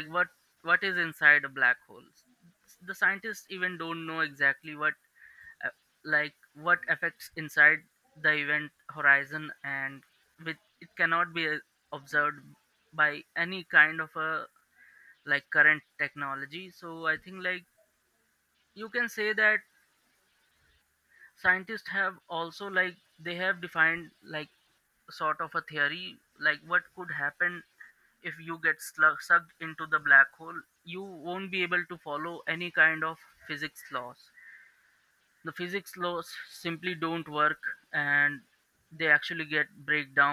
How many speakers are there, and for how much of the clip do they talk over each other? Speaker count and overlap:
1, no overlap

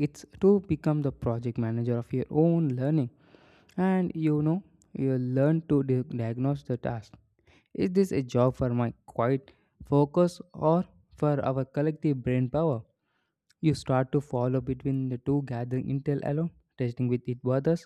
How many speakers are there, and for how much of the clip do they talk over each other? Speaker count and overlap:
1, no overlap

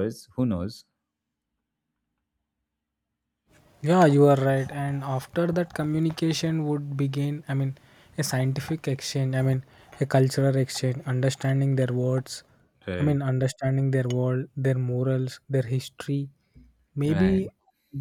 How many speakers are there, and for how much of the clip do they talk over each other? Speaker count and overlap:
2, about 4%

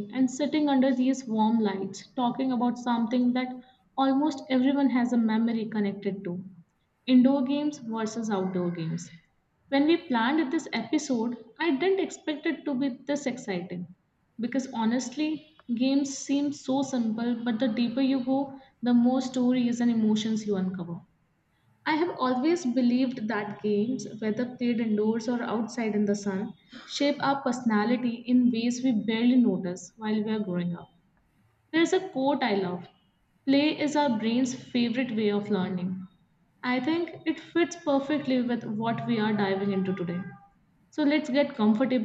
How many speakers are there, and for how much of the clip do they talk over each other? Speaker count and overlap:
1, no overlap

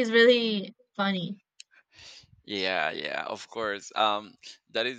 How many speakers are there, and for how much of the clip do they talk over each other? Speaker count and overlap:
2, no overlap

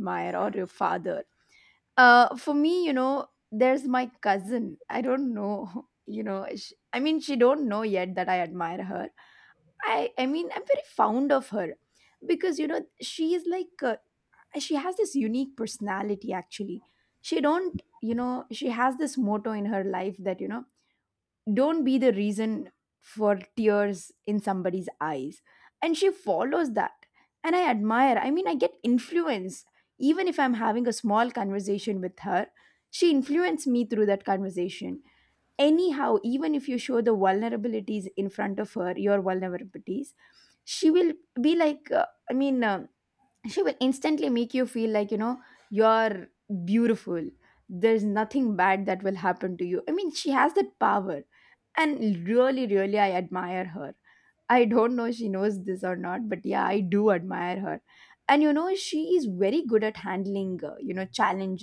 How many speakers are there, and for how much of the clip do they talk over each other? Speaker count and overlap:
1, no overlap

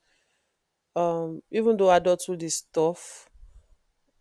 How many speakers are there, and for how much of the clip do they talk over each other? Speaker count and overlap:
1, no overlap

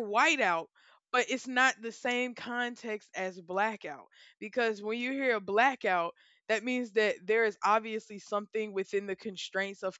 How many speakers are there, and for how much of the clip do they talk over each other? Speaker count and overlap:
1, no overlap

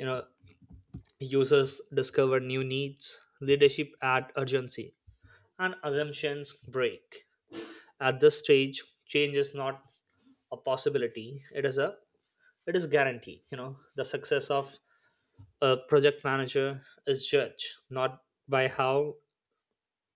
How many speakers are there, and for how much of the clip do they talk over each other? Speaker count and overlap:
1, no overlap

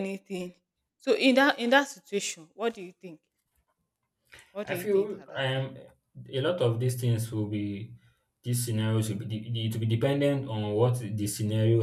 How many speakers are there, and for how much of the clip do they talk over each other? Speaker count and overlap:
2, about 8%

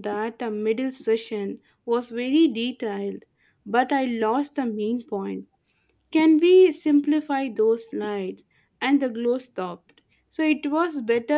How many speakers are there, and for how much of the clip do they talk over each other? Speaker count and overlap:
1, no overlap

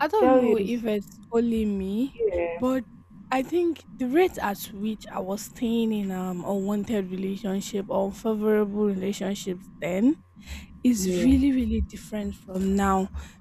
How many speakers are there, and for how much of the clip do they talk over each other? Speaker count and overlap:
2, about 8%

